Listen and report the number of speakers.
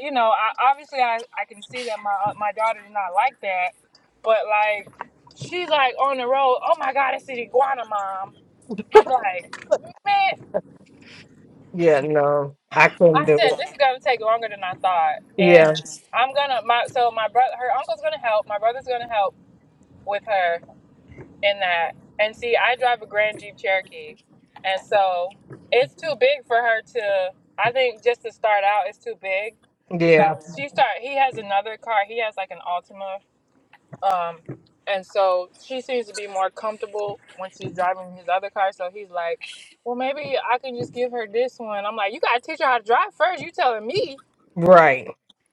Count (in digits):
2